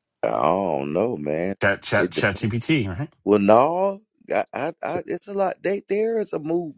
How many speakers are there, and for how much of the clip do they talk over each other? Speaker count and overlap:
2, no overlap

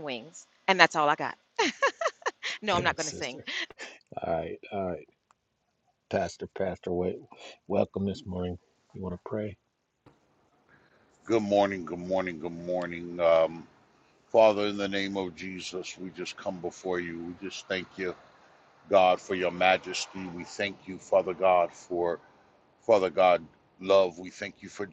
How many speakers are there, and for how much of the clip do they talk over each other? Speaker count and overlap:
3, about 3%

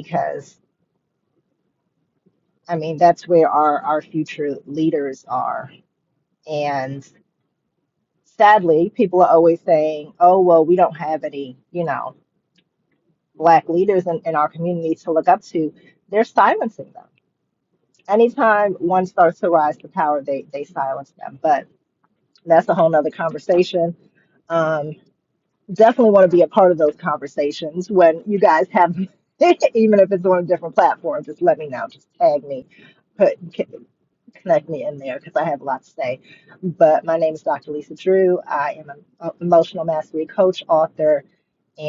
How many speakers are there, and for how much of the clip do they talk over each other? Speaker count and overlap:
1, no overlap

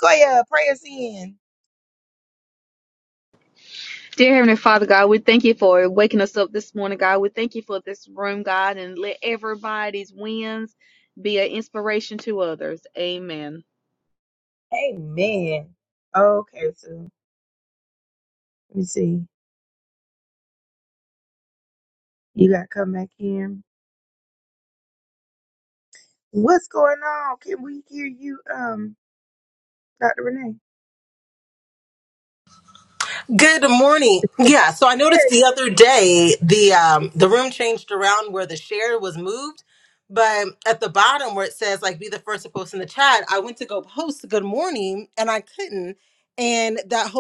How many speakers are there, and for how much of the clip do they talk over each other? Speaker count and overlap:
3, about 1%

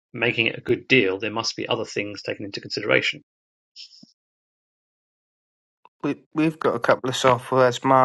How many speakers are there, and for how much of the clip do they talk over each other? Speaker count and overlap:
2, no overlap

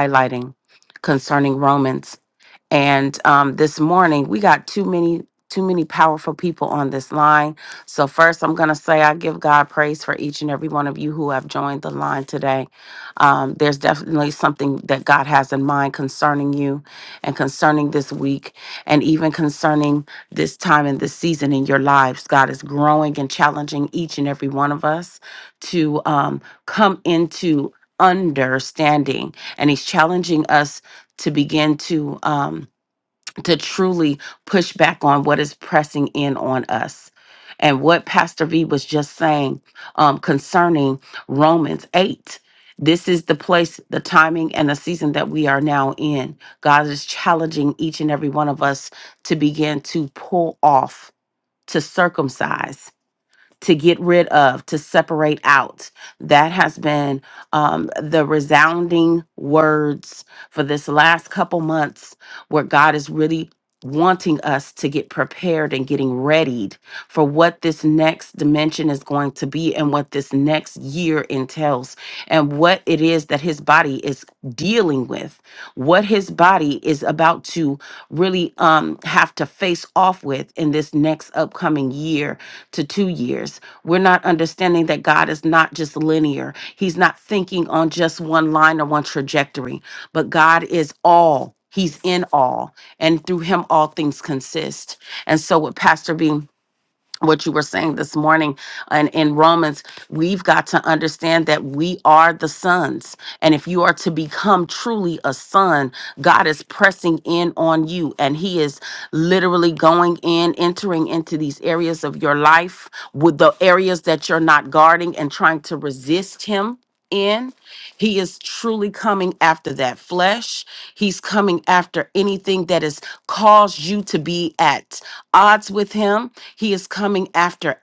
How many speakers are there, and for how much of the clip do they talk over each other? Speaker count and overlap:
1, no overlap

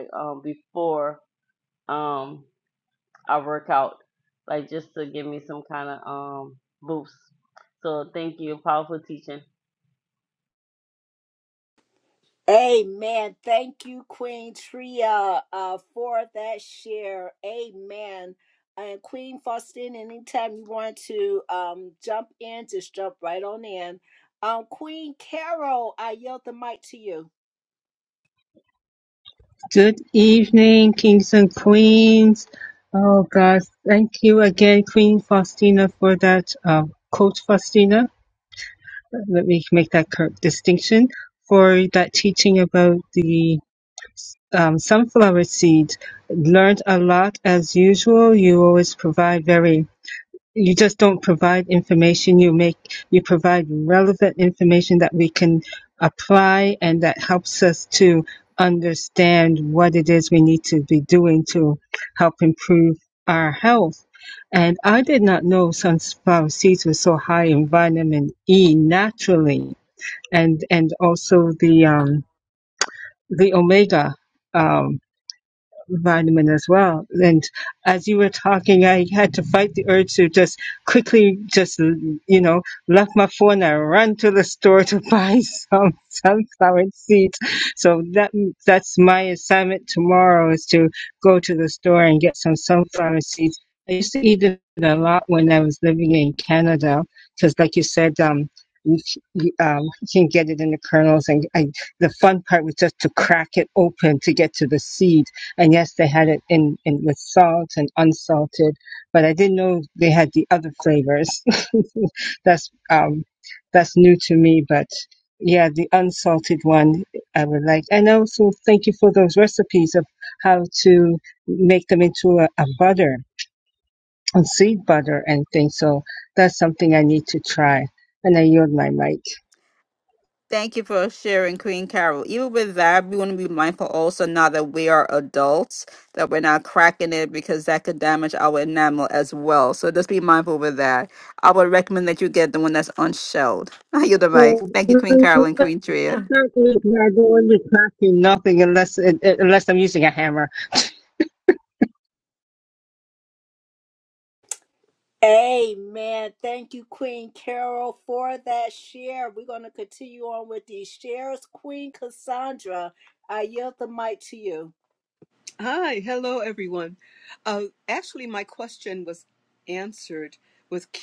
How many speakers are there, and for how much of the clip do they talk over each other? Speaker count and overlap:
5, about 1%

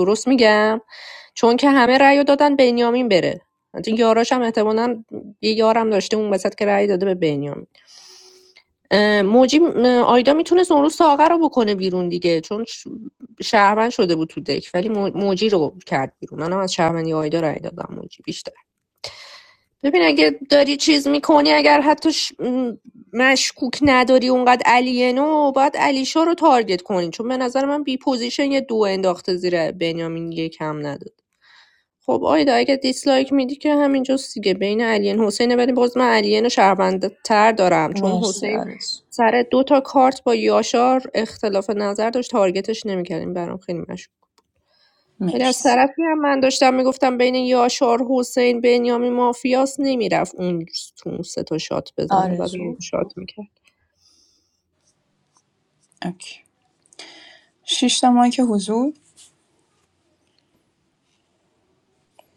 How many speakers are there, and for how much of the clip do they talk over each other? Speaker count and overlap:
2, about 3%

